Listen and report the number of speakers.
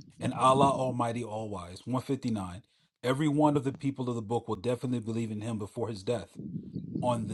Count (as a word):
one